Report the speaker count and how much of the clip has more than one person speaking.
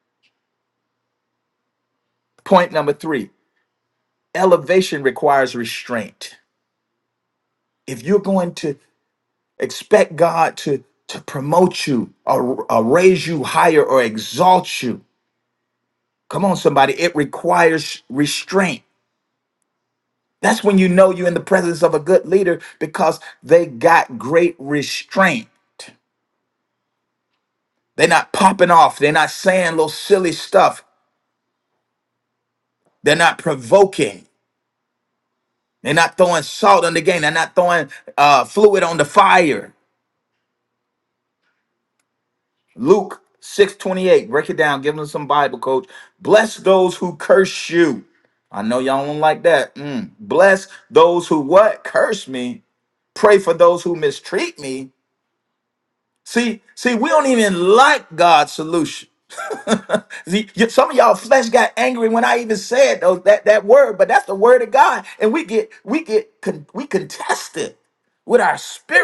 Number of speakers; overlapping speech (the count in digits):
1, no overlap